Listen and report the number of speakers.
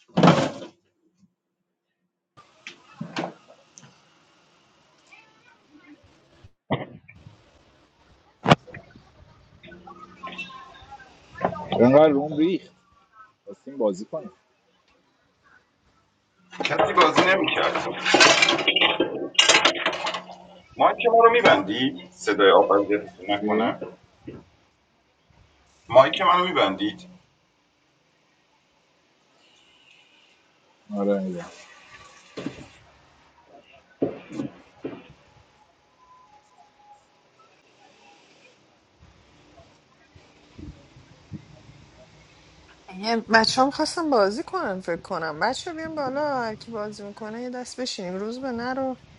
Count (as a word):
three